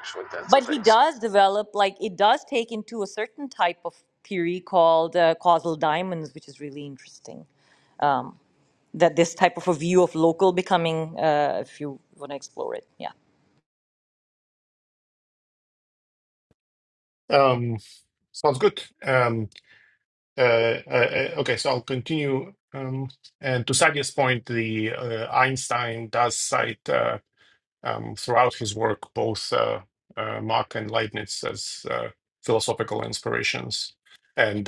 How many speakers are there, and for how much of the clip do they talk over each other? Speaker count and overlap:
3, about 1%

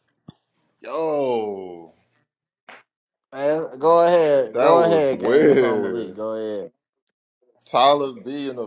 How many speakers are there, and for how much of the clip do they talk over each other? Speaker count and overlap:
2, about 18%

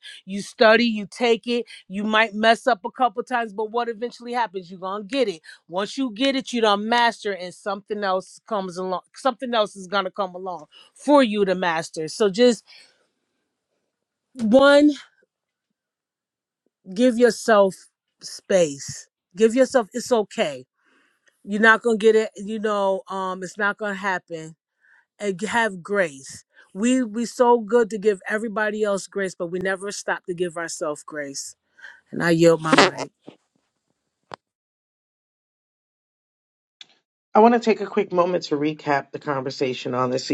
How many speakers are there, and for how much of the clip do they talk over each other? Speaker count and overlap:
2, no overlap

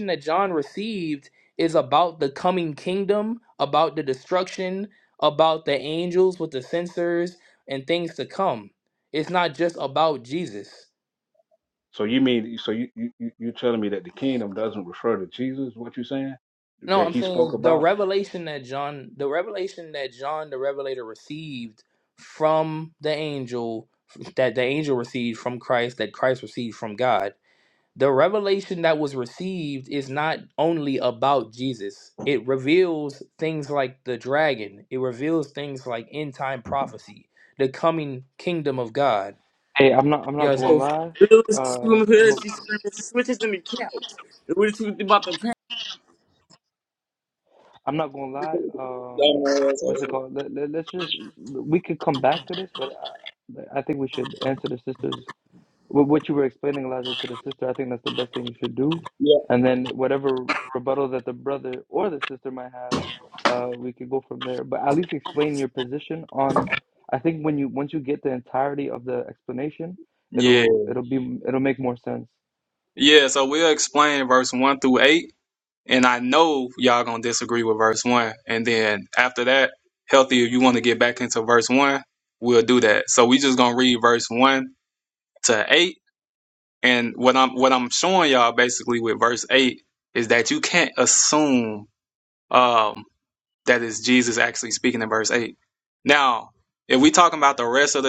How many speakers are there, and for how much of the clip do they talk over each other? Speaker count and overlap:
5, about 2%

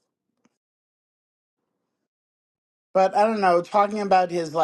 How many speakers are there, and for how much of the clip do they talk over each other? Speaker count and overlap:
1, no overlap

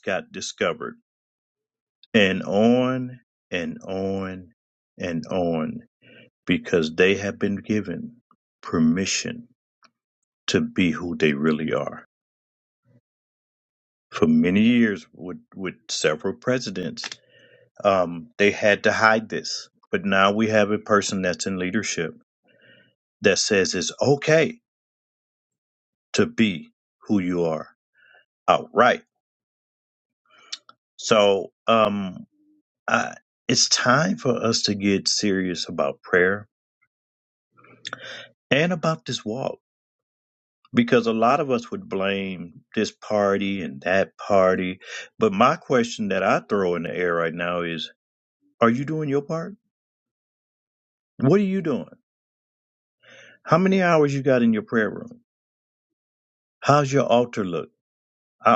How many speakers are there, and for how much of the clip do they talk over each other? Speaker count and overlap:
1, no overlap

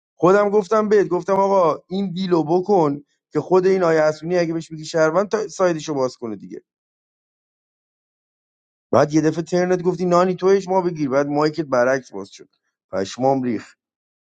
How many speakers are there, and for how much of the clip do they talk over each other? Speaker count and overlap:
1, no overlap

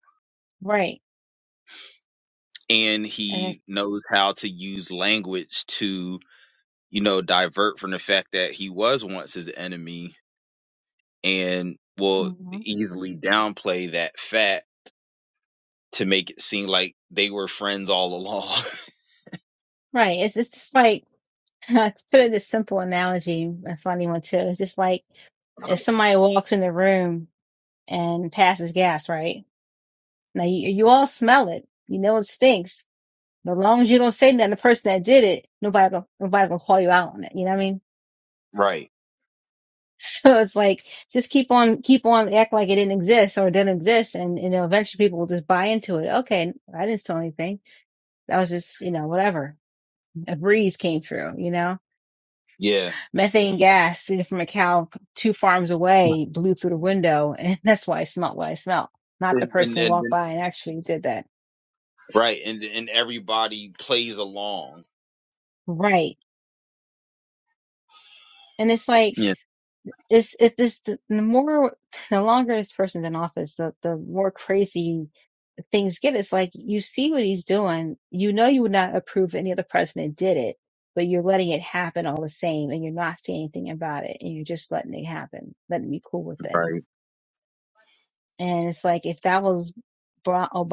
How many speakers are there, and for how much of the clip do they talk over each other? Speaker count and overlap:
2, about 2%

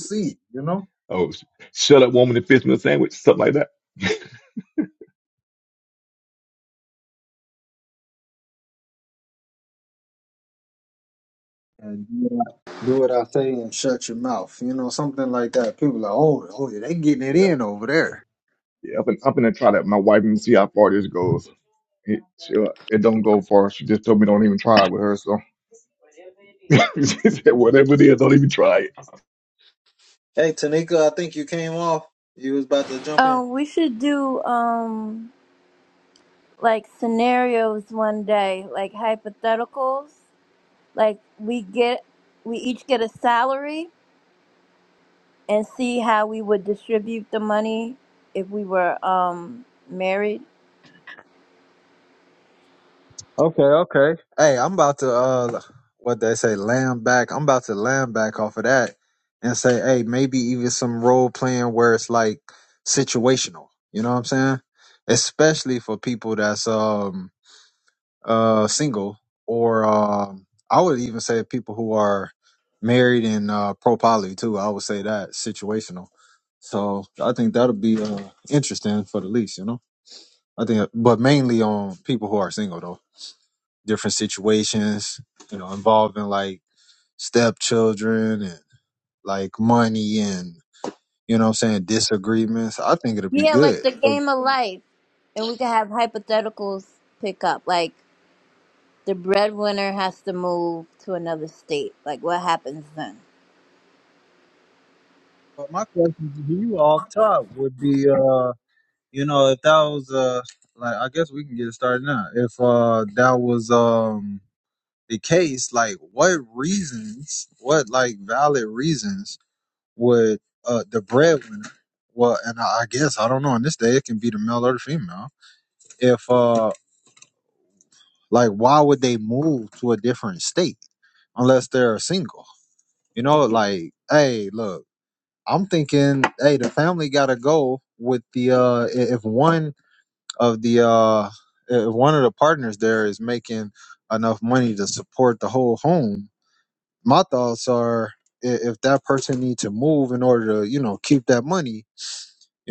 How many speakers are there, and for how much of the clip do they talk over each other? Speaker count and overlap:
3, about 1%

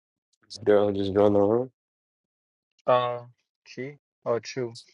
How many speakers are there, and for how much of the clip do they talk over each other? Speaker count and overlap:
2, no overlap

